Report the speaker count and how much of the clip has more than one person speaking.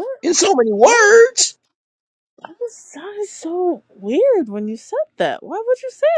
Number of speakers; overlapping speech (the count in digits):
2, about 4%